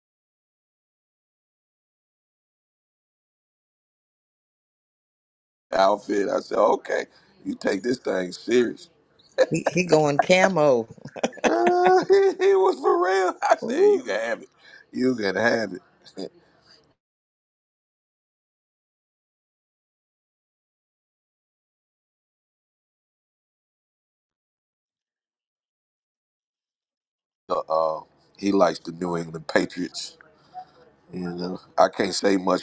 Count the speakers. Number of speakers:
2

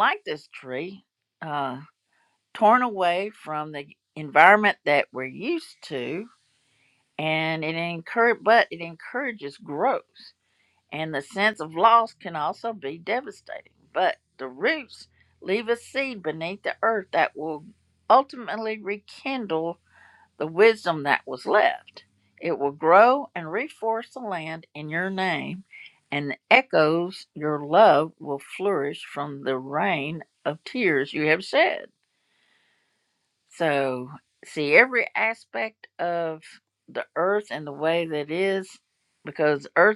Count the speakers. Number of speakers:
1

